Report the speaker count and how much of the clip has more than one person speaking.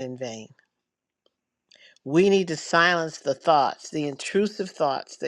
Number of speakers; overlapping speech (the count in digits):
1, no overlap